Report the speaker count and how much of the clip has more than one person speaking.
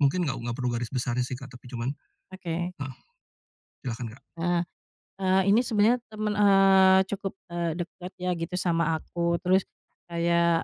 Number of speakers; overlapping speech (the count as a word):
two, no overlap